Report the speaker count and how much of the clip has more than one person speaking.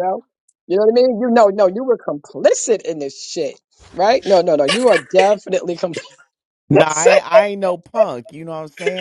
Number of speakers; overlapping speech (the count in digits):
2, no overlap